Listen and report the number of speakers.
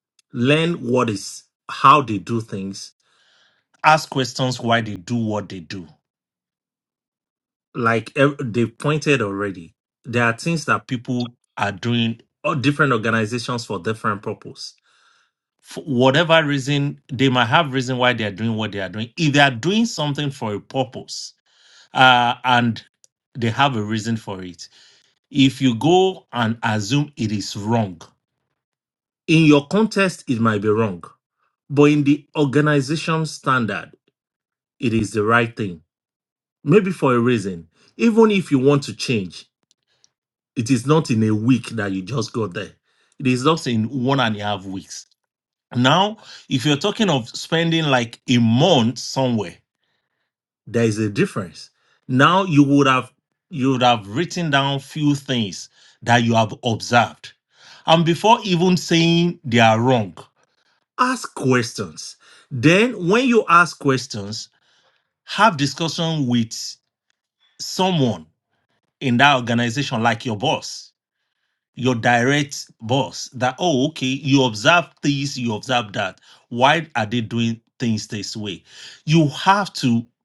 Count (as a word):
one